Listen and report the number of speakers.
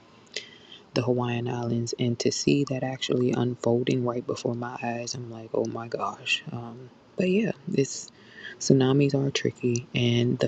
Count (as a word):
one